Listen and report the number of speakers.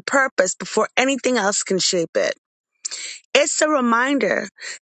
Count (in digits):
1